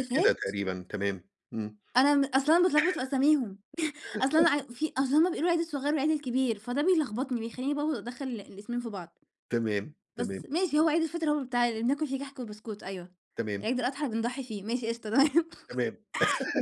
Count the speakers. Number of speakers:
two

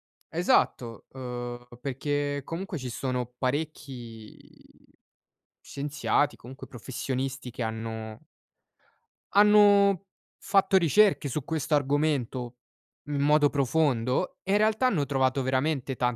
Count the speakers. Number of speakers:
one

